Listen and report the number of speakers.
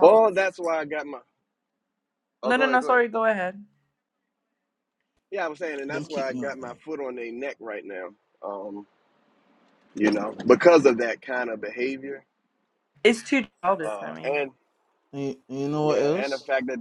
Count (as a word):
three